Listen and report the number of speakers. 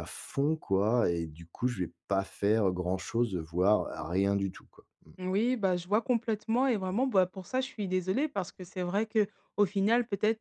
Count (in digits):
2